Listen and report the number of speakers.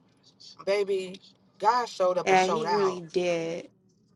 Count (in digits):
2